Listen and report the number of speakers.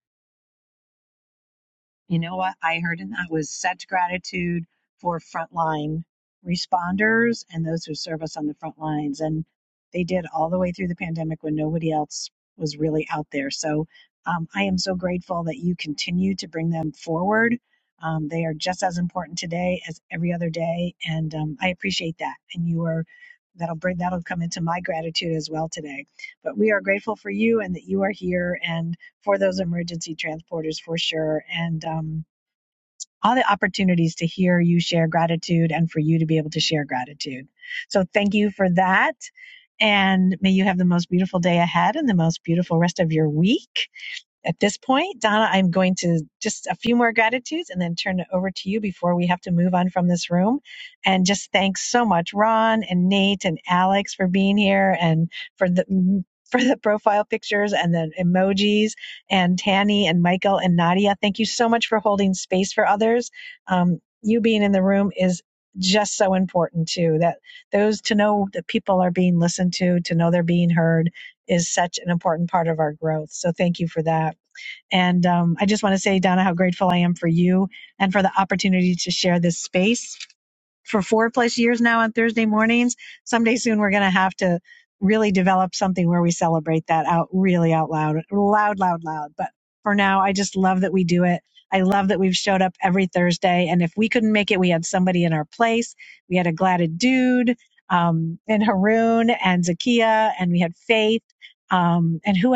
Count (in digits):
1